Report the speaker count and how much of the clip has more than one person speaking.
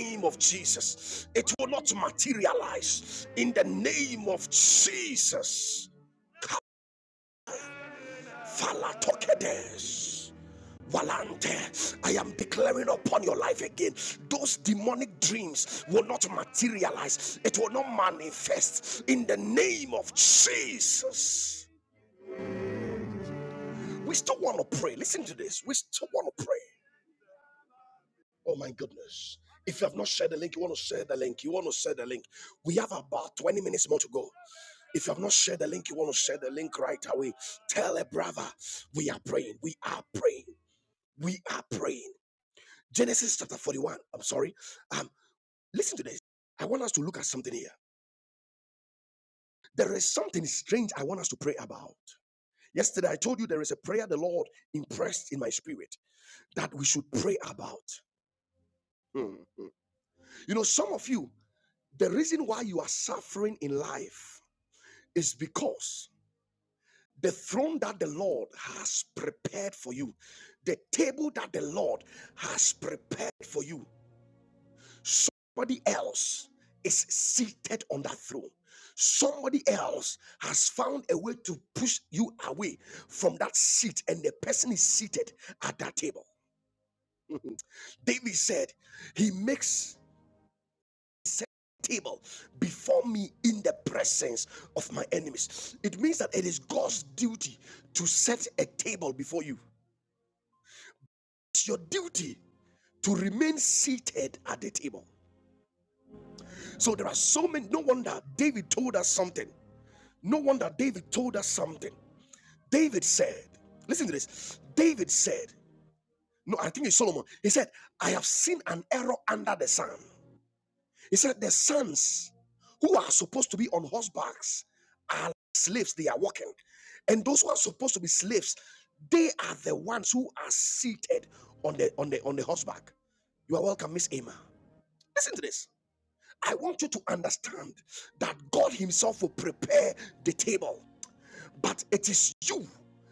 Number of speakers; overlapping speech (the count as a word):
one, no overlap